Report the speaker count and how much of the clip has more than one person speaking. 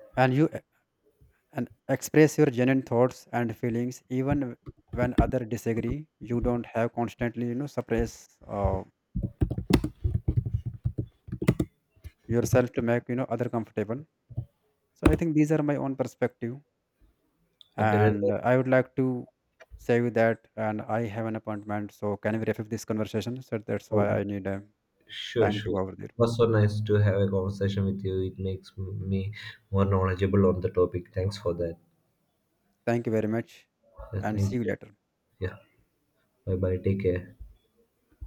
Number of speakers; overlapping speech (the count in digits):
2, about 4%